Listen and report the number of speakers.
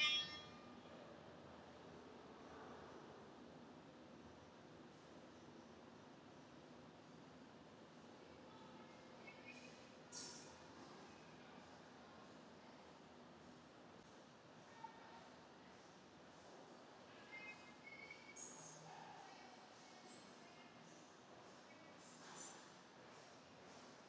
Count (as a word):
zero